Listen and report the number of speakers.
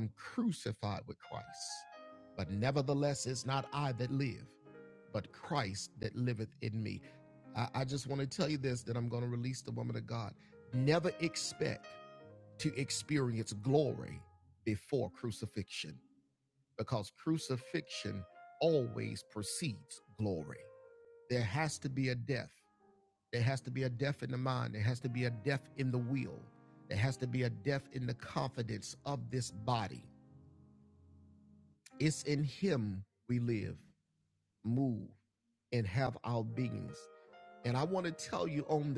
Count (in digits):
1